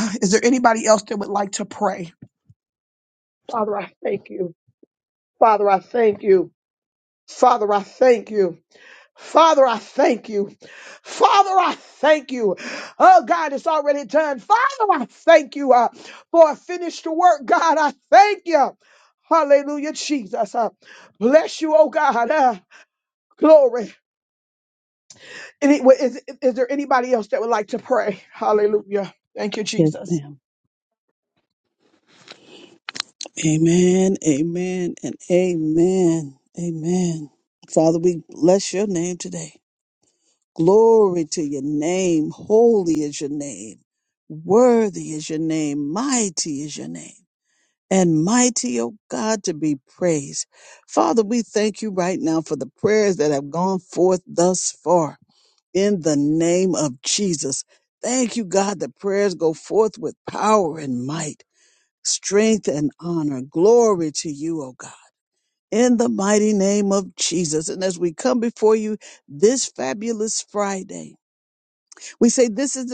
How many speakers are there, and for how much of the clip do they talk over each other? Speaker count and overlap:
2, under 1%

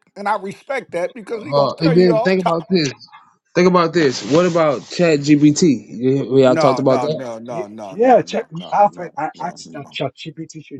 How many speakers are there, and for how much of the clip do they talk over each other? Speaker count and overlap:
3, about 41%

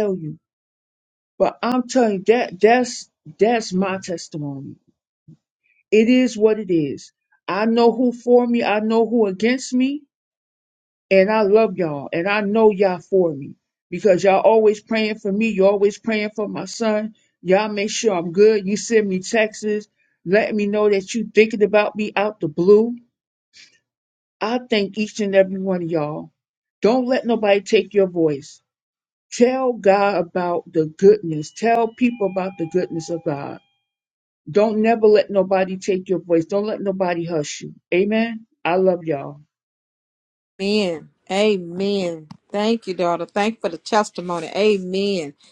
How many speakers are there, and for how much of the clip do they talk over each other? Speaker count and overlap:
2, no overlap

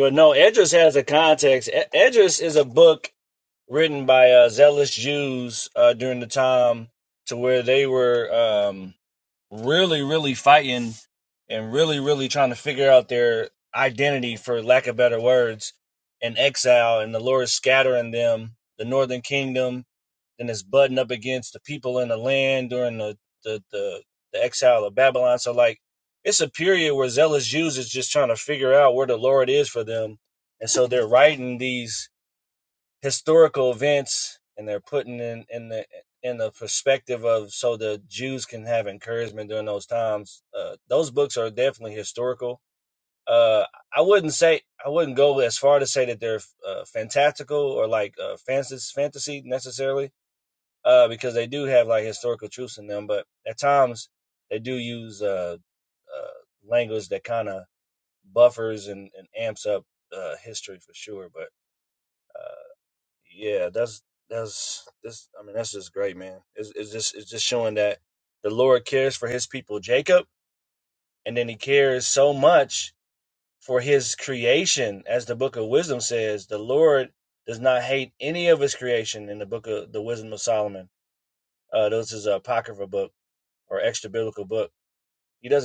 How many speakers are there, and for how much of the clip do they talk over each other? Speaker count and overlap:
1, no overlap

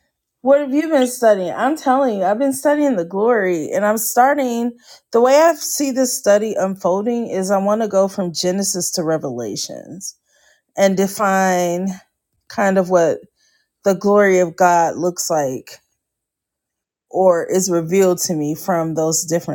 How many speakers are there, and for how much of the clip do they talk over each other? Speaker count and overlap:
1, no overlap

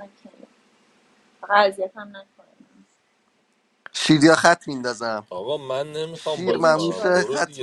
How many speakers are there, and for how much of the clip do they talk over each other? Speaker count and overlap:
3, about 18%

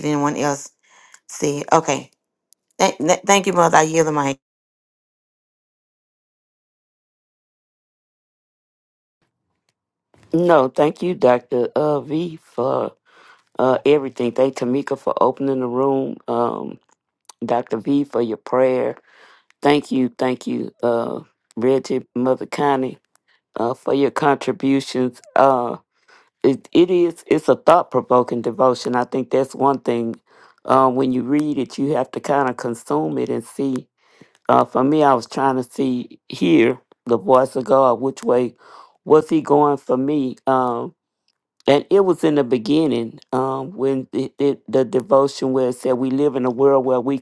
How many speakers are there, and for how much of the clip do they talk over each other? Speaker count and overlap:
2, no overlap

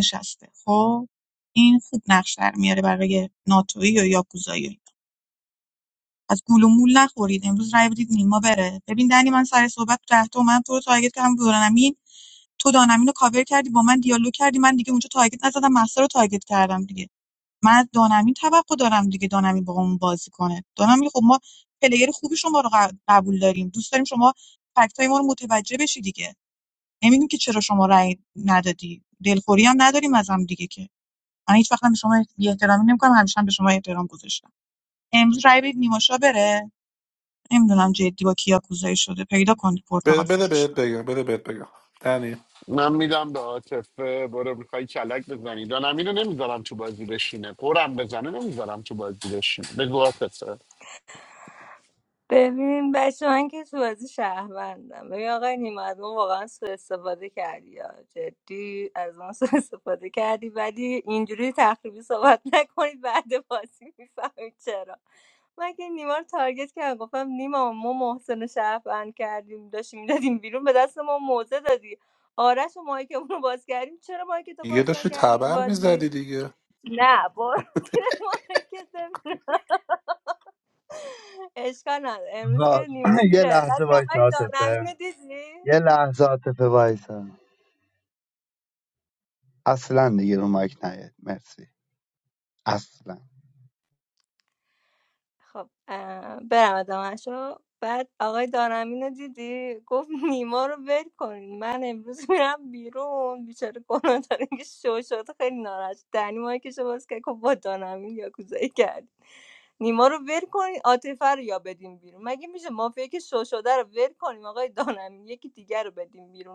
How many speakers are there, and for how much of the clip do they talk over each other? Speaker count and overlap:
5, about 3%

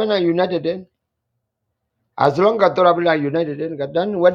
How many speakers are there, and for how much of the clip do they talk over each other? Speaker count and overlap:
1, no overlap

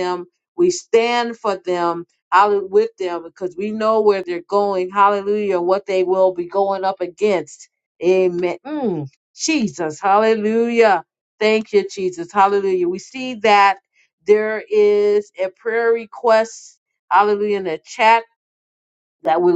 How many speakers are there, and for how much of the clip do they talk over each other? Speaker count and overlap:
1, no overlap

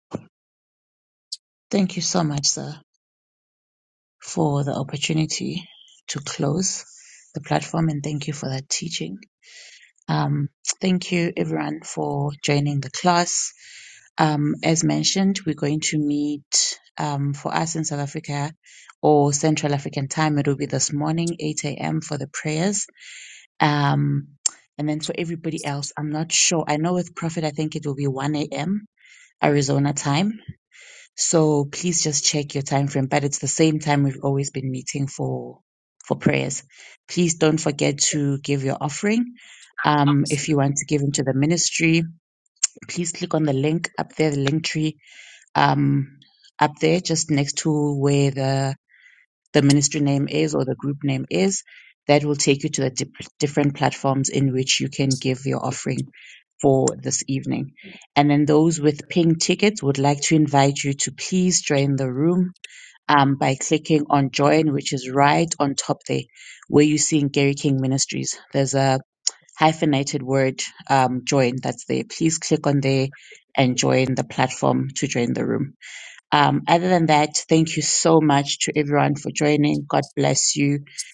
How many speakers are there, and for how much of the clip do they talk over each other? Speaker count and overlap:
1, no overlap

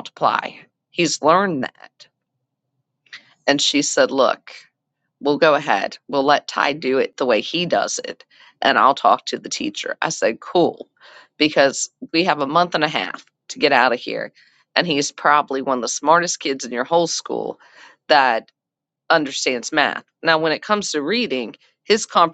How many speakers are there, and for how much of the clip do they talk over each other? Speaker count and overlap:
1, no overlap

